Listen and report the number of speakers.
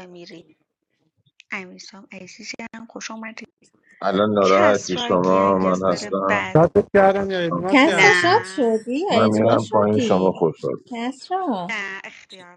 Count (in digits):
4